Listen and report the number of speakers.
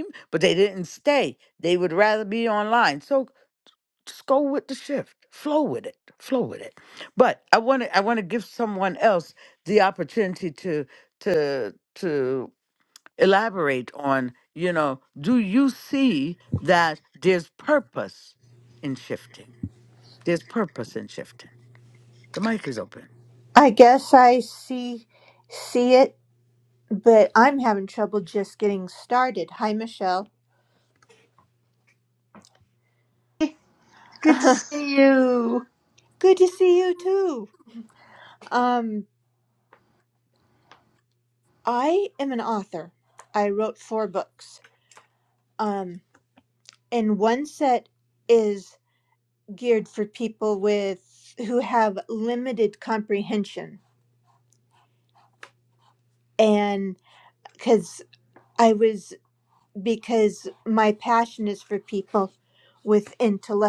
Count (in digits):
3